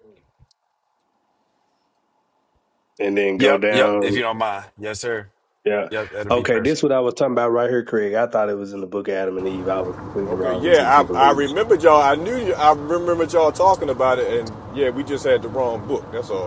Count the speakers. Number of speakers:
3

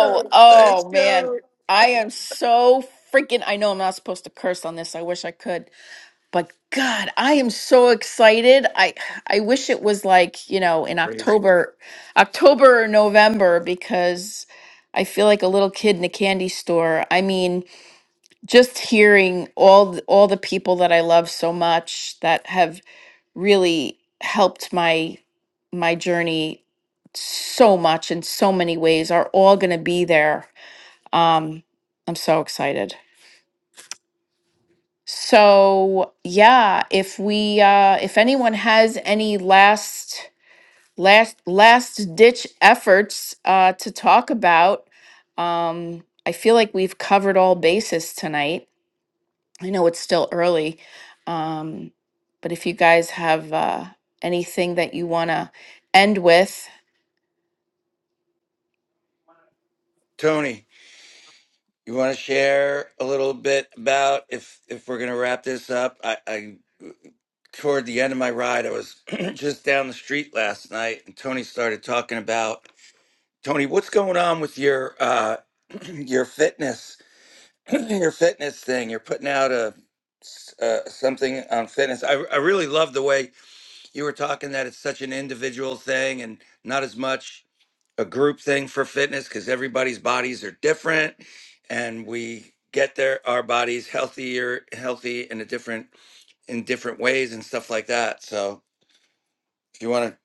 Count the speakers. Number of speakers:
2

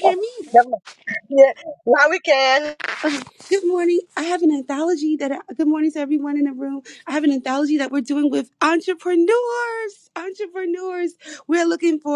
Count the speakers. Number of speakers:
2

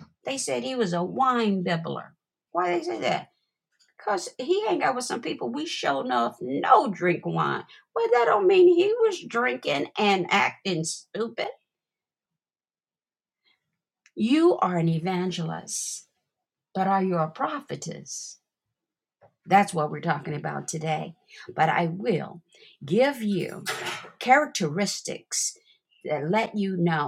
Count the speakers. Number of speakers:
1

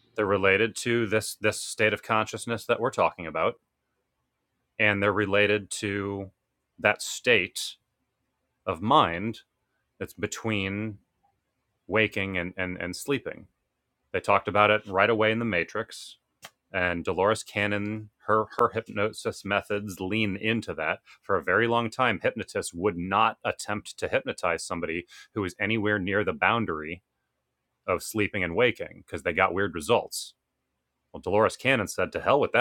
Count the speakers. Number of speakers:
1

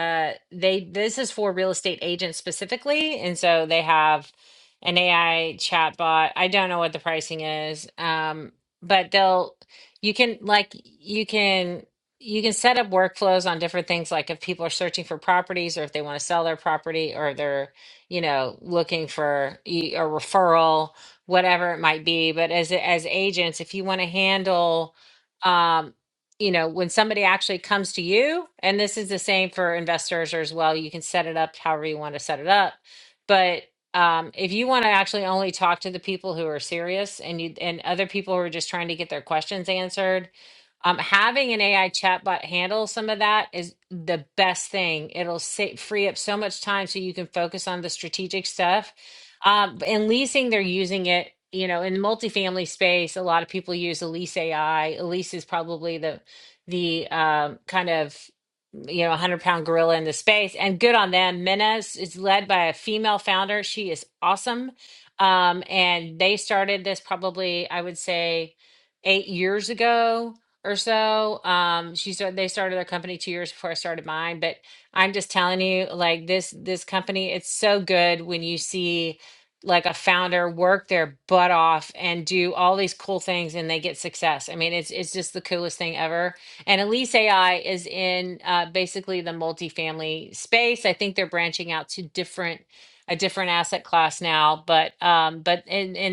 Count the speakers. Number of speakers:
1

